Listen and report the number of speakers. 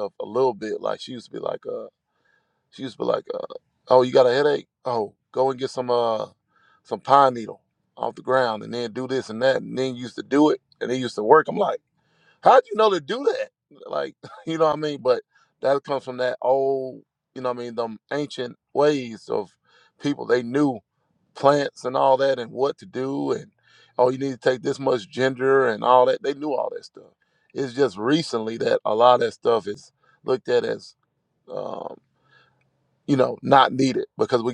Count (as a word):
one